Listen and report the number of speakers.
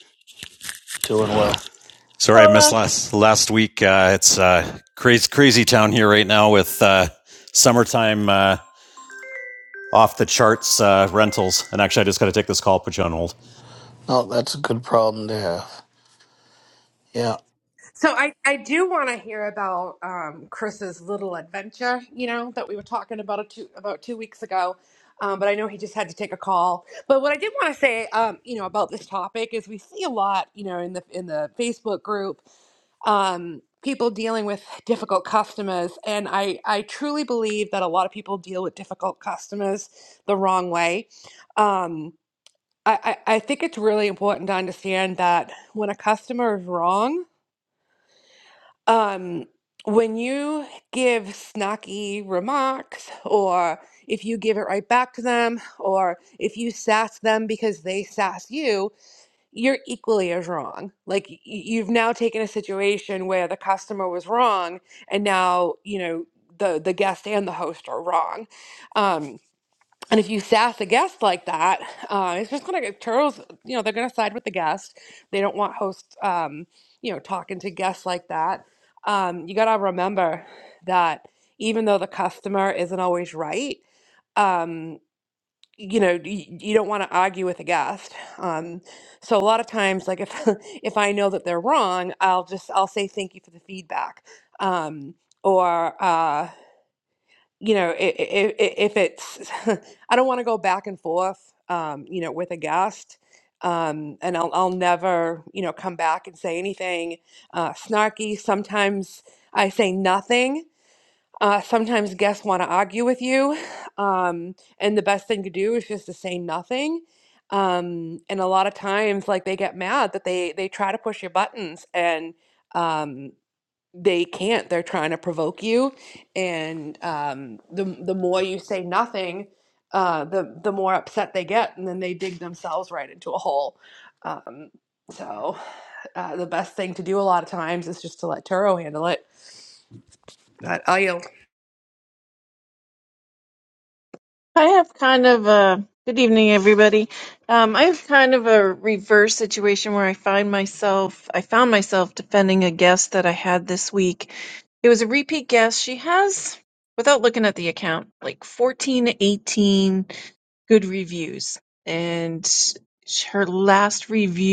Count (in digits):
4